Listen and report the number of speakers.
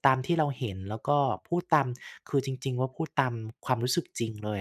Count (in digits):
1